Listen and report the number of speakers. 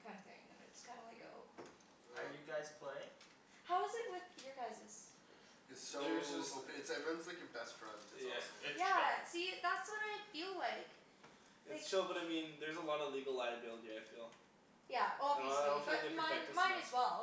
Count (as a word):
four